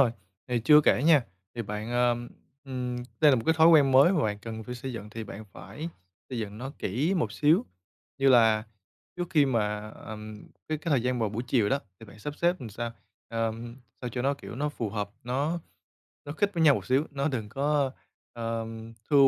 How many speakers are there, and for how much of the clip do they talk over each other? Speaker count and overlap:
one, no overlap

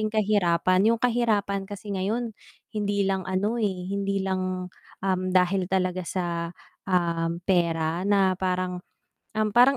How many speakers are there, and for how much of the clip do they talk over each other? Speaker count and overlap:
one, no overlap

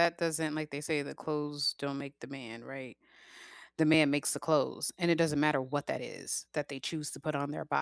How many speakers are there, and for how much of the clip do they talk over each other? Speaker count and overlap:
one, no overlap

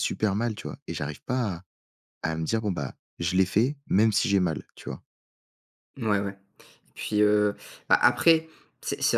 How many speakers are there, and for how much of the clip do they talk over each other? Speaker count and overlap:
two, no overlap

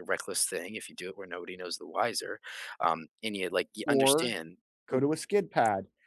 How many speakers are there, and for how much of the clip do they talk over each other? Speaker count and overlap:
two, about 9%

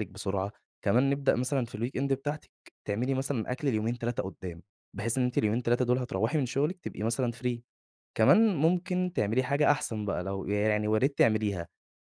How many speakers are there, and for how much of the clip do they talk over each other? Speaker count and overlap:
one, no overlap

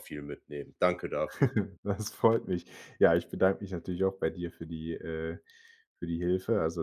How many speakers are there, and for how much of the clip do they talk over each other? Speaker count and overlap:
two, no overlap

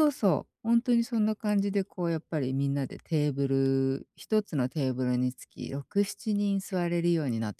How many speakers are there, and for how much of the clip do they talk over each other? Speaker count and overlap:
one, no overlap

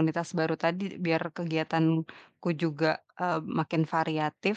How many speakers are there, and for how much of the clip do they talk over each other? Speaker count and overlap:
one, no overlap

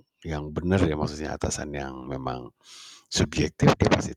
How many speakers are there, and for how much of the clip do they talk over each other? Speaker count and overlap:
one, no overlap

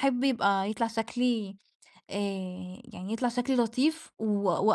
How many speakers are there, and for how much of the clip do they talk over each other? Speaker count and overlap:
one, no overlap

